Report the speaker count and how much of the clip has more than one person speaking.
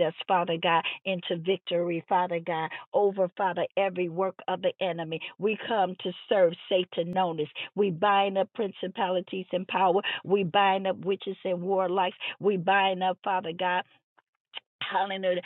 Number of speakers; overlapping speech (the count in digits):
1, no overlap